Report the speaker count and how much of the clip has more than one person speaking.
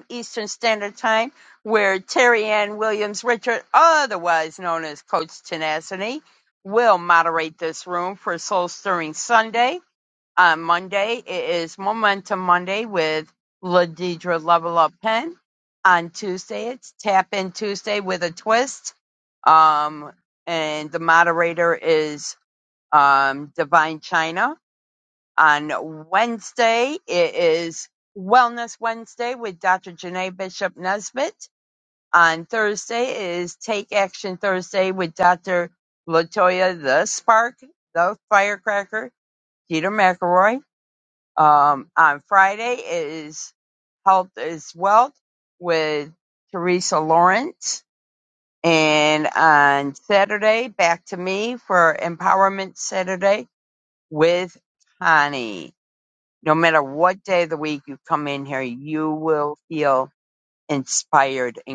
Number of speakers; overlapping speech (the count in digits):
1, no overlap